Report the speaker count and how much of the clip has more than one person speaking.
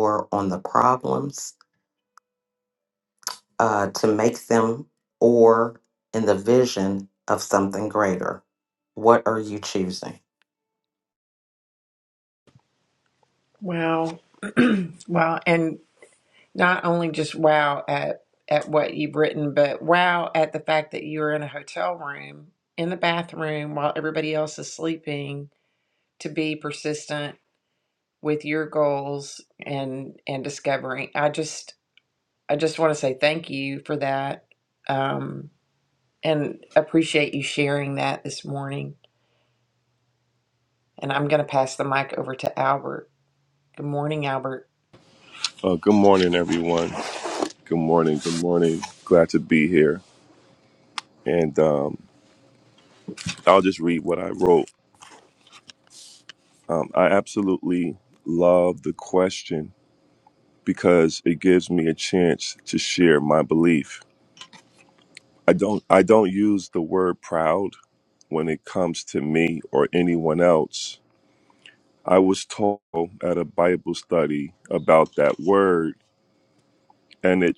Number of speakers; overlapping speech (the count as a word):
three, no overlap